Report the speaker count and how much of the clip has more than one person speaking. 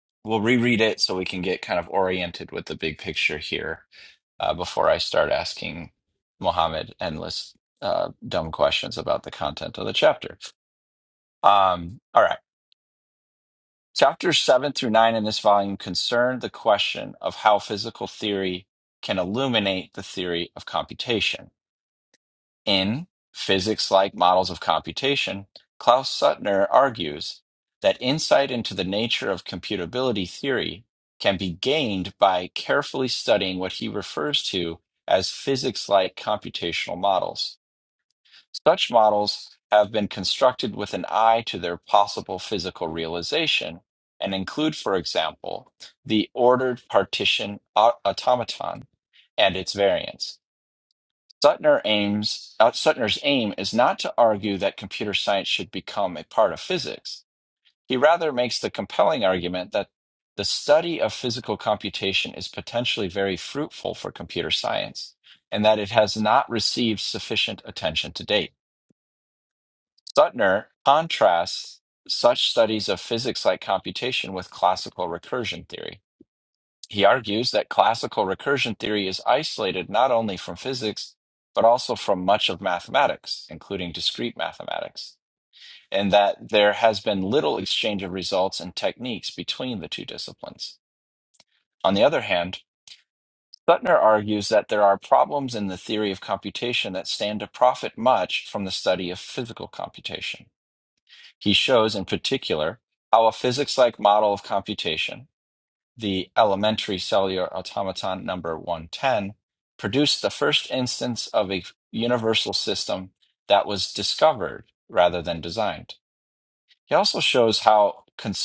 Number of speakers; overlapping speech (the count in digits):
1, no overlap